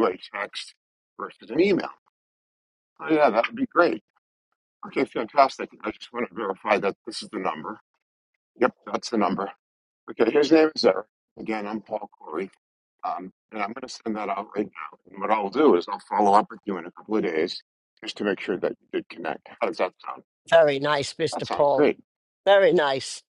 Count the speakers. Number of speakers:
2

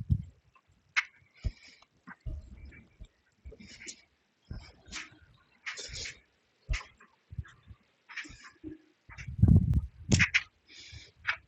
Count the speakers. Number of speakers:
0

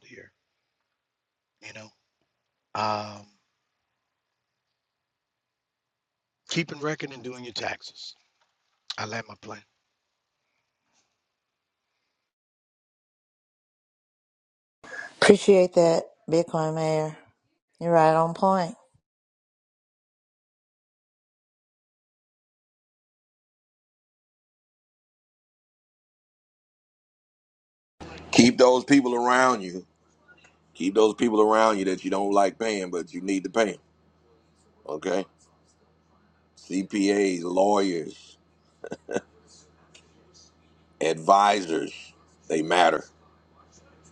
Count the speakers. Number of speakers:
3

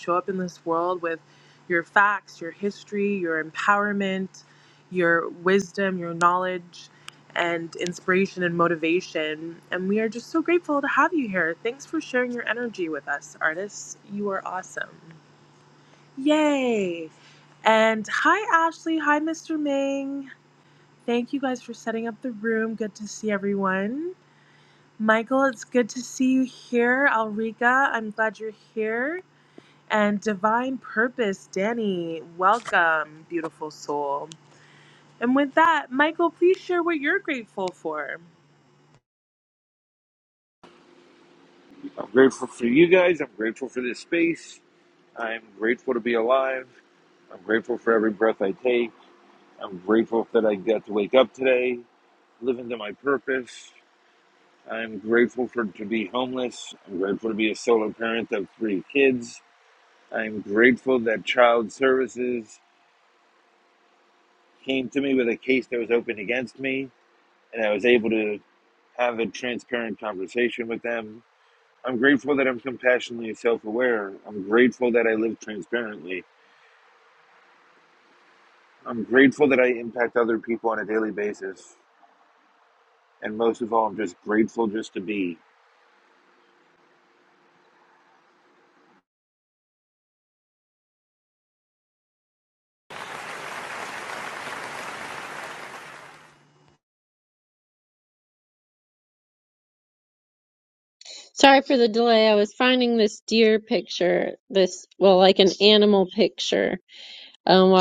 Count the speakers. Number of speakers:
3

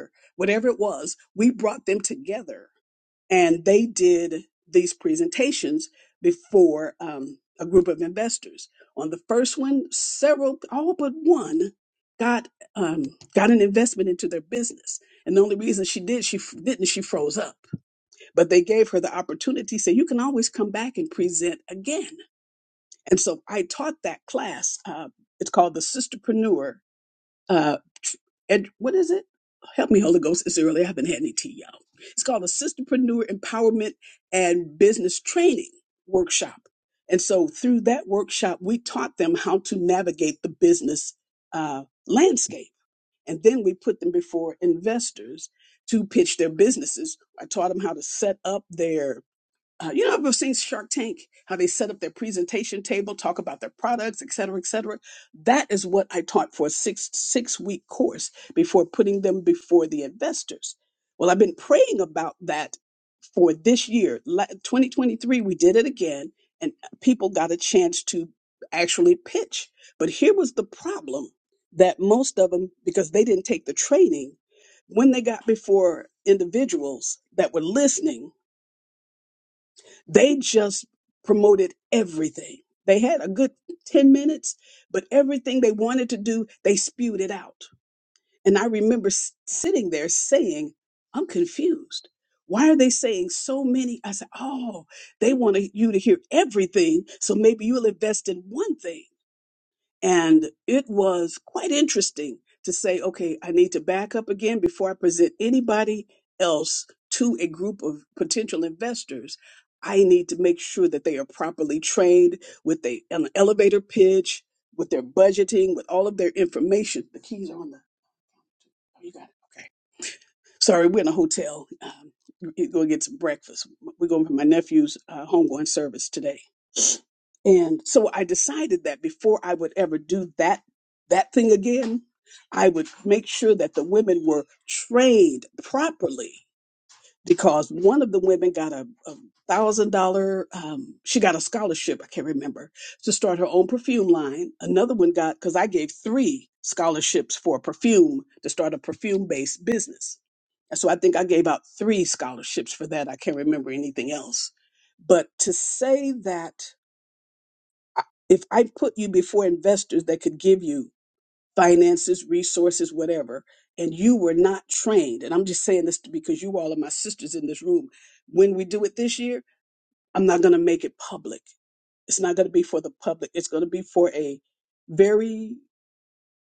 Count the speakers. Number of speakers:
1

